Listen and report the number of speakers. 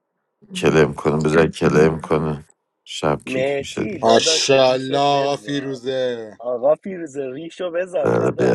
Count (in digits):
3